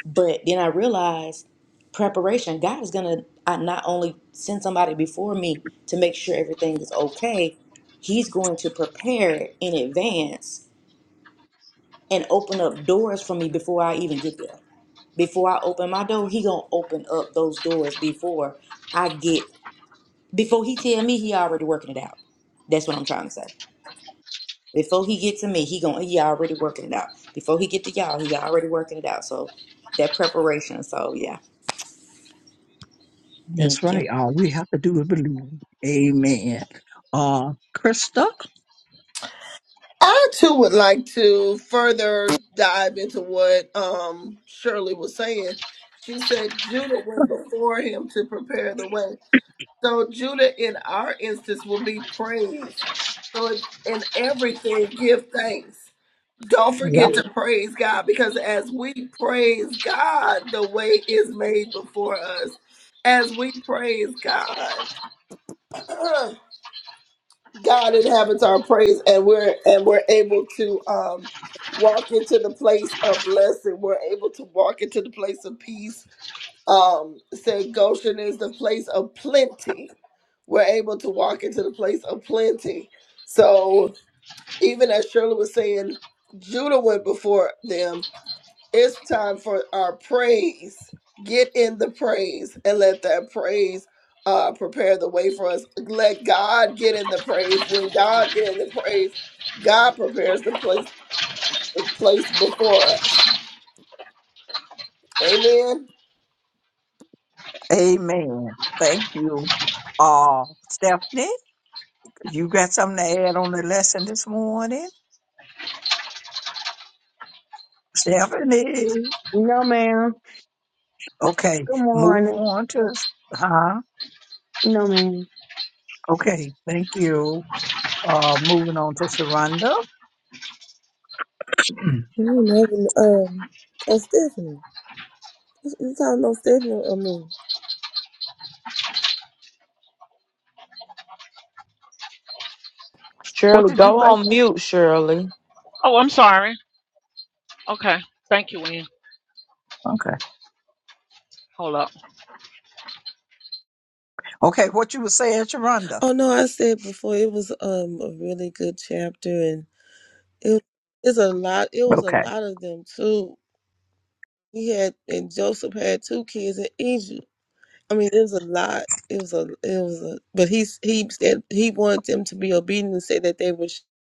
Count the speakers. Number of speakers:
7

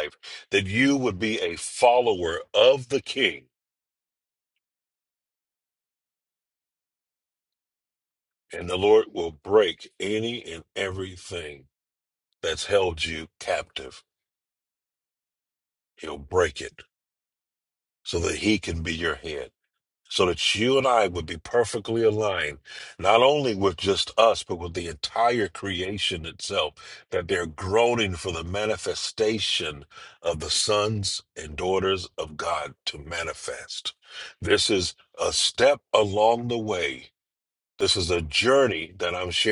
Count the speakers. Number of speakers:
1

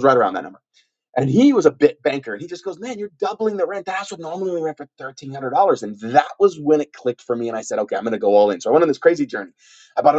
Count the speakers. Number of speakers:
1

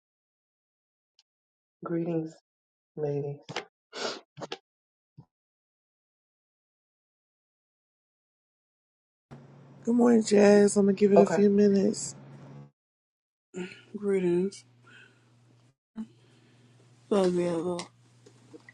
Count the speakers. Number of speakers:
3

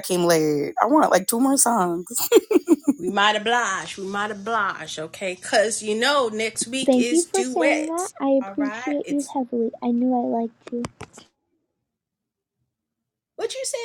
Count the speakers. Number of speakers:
3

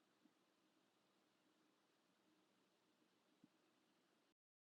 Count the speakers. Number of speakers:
0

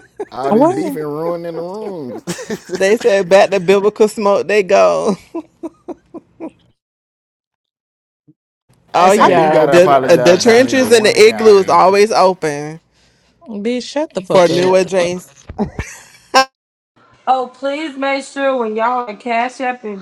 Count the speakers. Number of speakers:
4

